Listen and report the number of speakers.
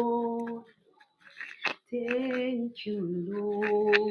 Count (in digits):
1